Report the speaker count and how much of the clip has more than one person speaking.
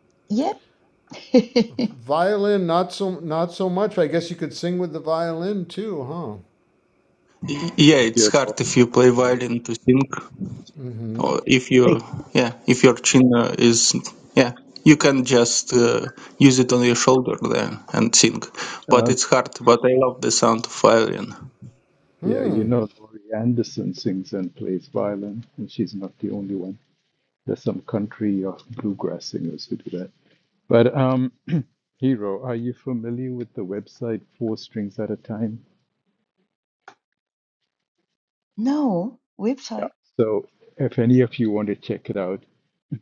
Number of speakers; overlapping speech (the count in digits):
4, about 5%